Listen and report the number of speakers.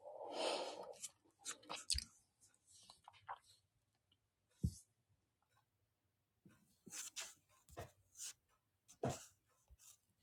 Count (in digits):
0